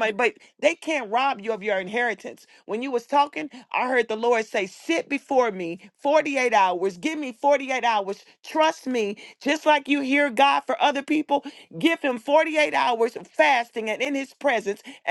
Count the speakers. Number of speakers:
1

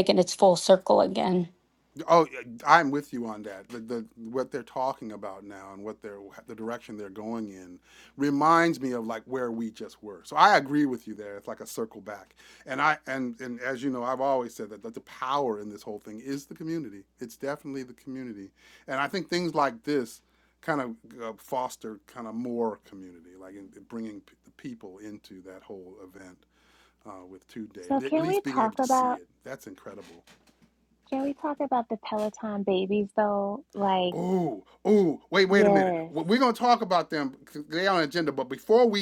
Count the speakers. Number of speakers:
3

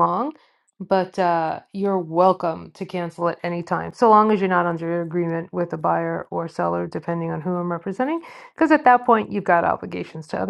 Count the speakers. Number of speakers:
1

